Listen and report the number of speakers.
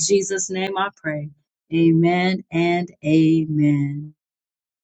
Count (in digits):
1